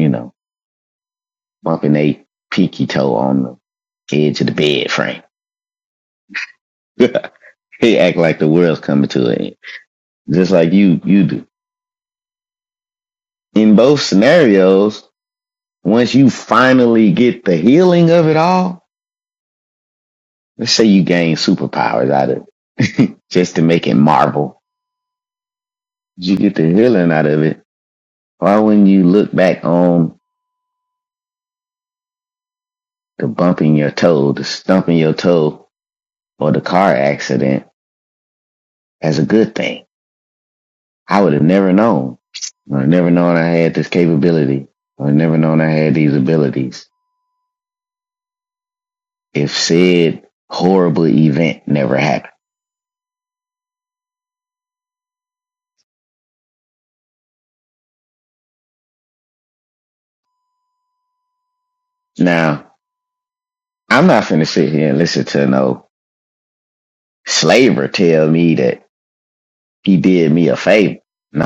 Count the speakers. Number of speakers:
1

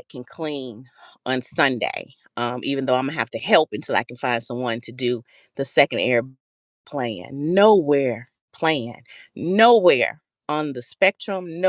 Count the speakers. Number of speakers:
1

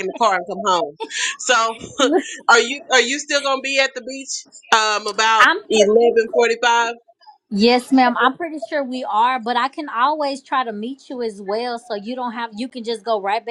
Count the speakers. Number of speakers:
2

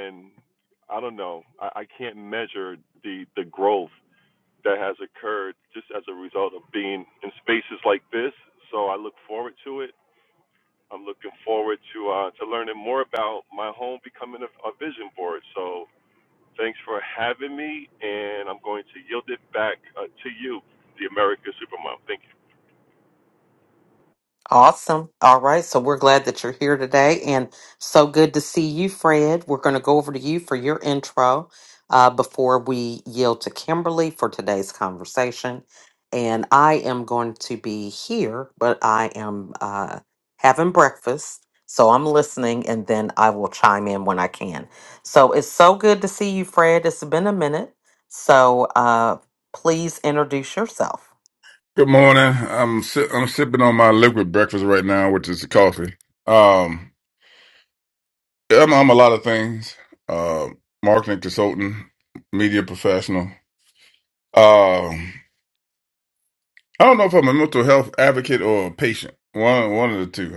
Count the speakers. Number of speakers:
3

